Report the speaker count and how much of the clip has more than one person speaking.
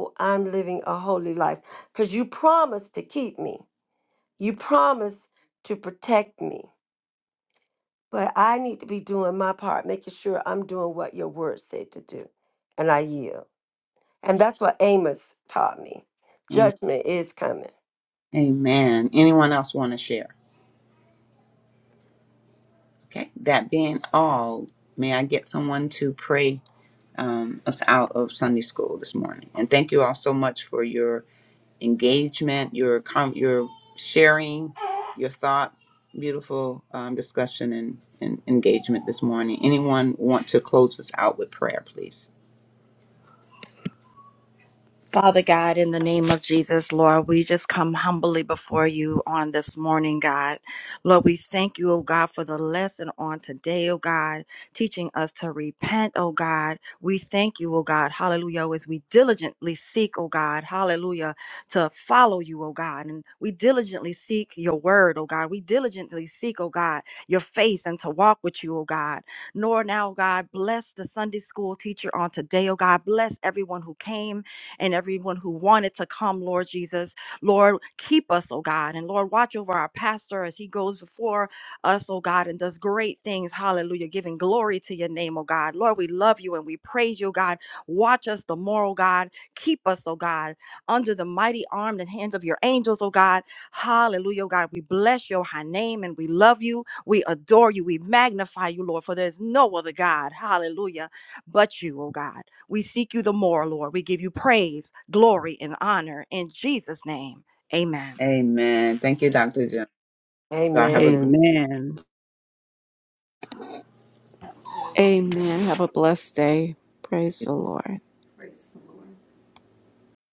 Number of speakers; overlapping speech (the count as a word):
five, under 1%